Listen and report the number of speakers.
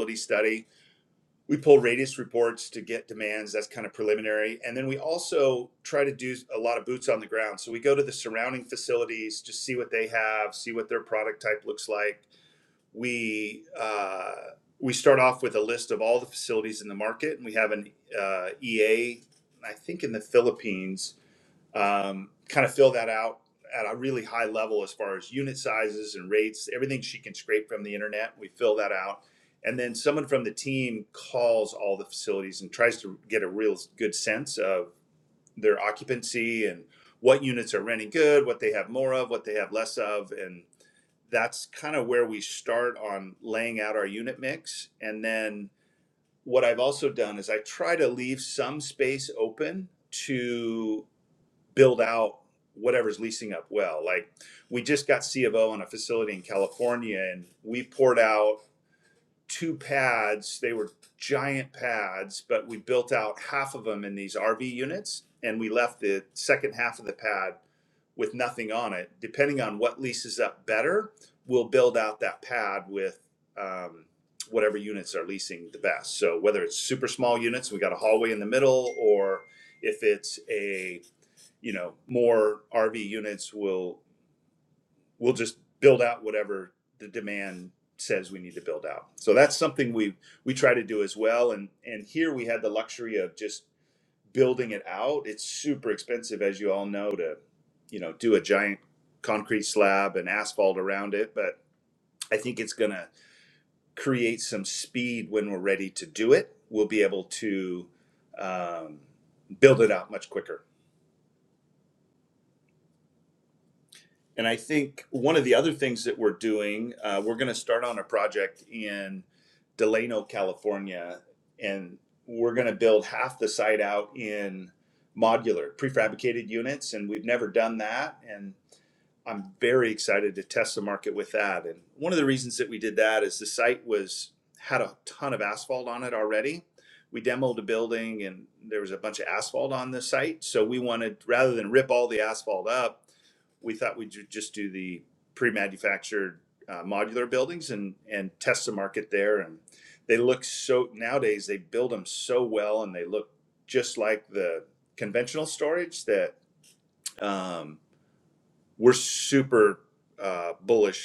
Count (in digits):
1